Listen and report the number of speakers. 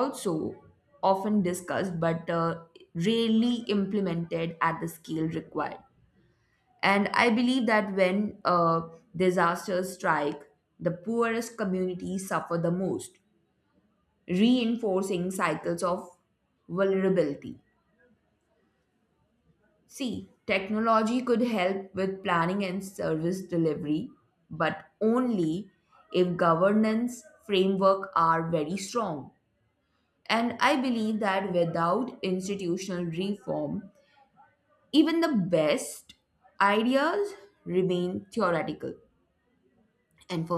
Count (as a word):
one